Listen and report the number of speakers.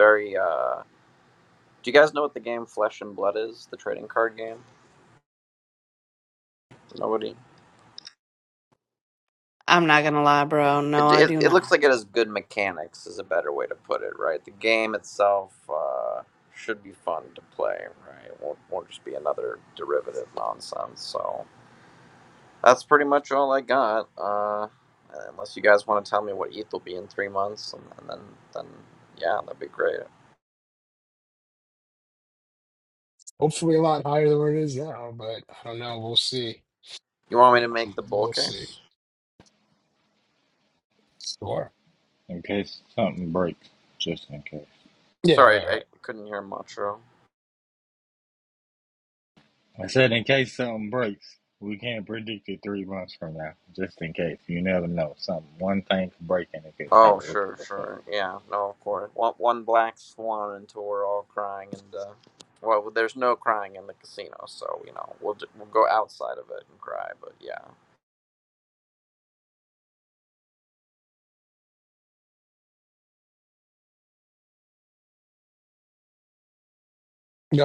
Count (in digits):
4